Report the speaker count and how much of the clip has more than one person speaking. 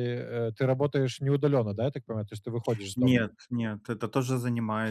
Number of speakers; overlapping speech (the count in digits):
2, about 5%